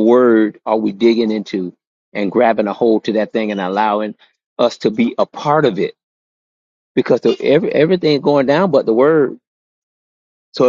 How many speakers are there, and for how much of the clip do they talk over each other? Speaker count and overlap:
one, no overlap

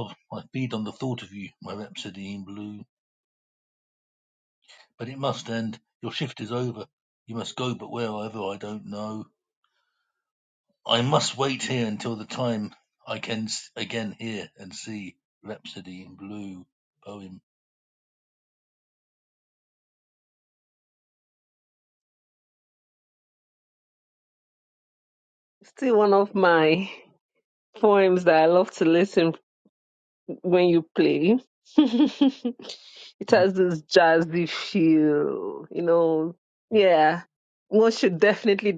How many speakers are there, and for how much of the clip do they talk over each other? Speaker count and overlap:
two, under 1%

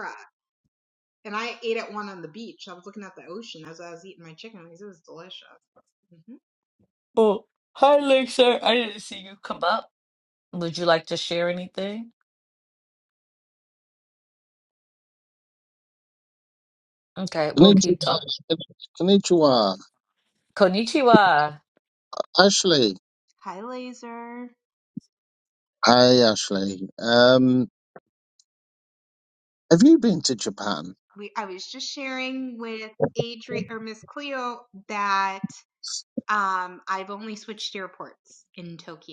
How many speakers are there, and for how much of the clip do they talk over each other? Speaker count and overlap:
three, about 2%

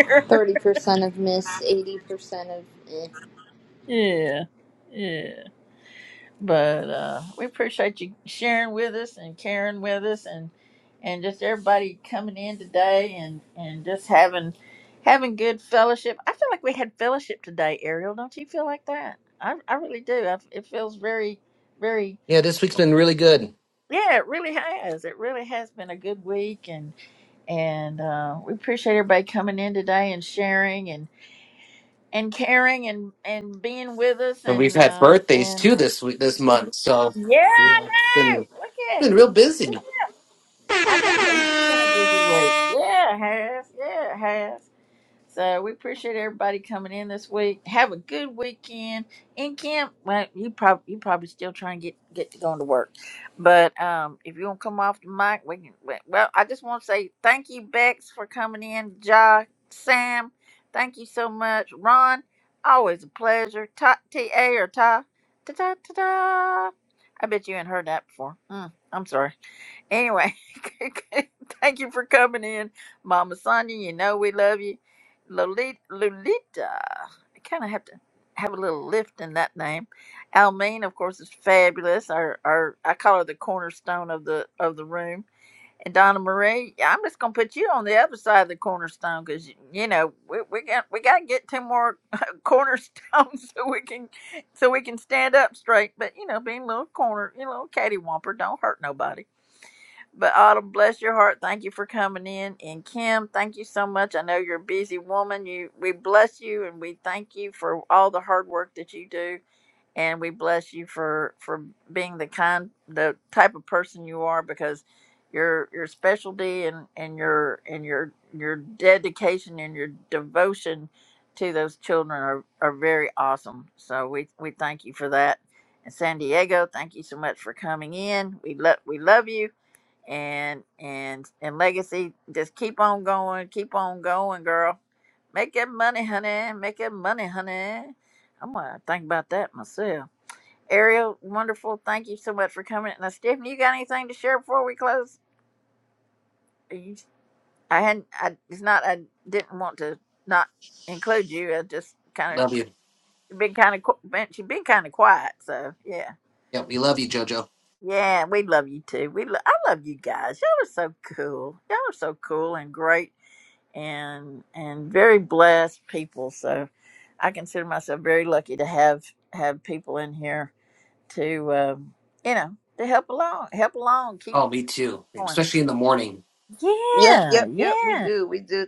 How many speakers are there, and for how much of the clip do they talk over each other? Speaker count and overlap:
four, about 2%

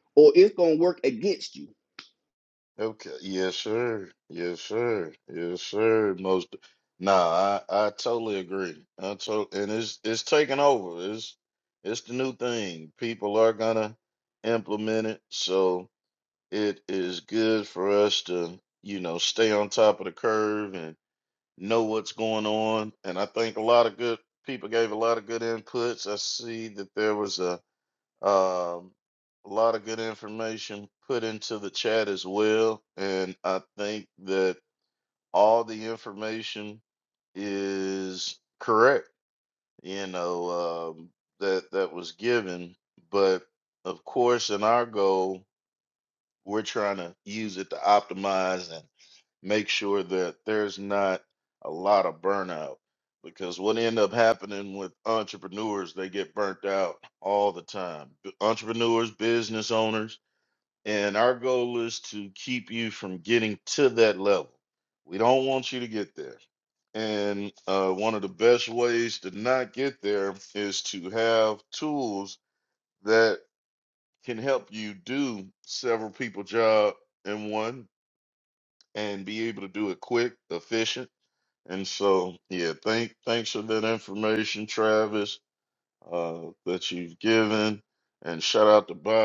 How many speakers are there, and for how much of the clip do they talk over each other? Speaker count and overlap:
two, no overlap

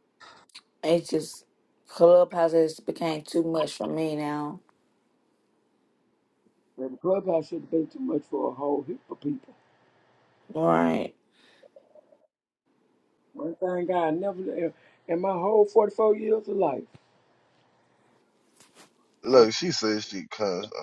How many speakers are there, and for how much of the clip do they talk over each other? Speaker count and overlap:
three, about 1%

